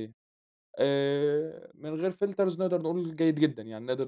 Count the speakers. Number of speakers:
one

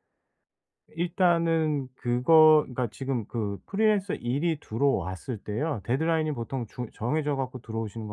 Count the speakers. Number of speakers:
one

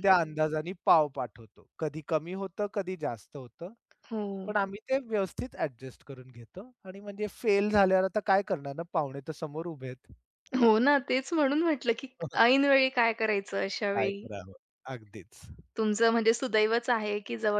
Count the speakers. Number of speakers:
two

